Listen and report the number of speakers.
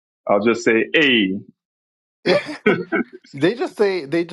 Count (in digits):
2